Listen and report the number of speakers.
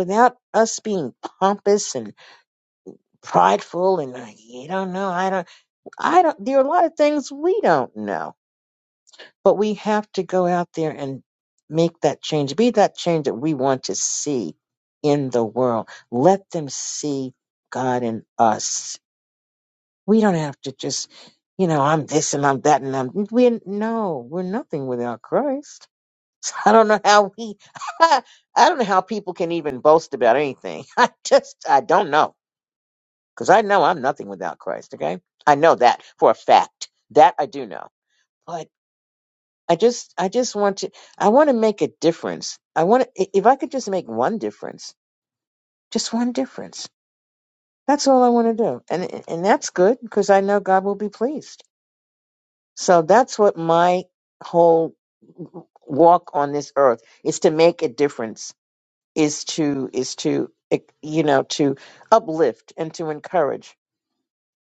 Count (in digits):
1